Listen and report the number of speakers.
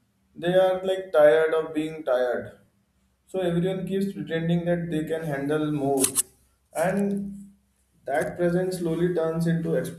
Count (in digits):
1